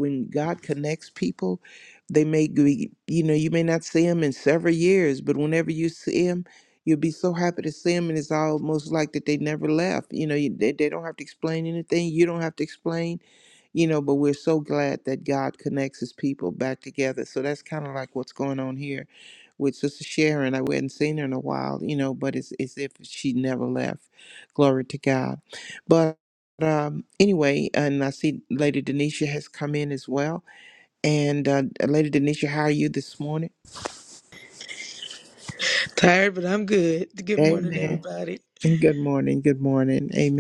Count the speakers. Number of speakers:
2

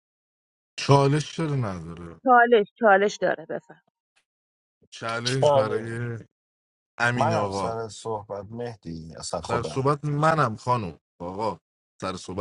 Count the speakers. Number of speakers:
3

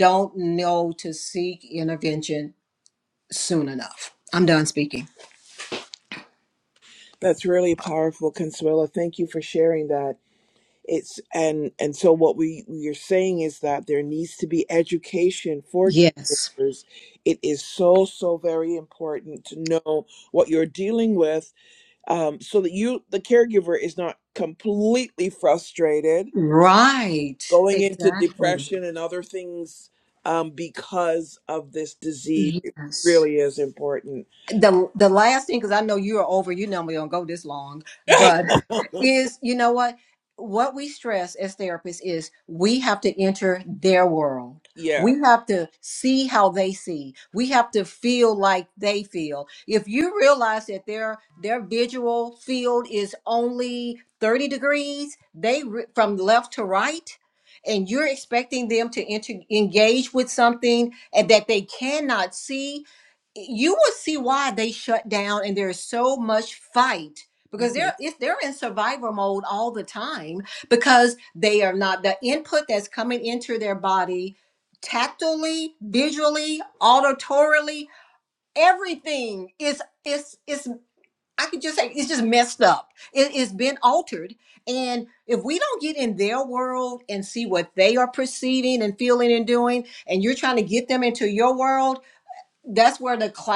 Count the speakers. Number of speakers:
2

